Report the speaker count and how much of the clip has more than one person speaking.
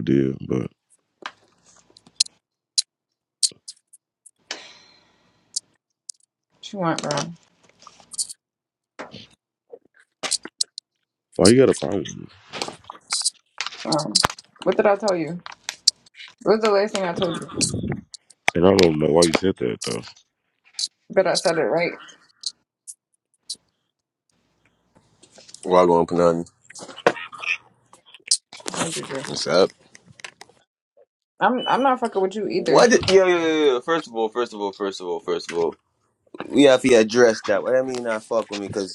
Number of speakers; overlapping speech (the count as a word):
three, about 1%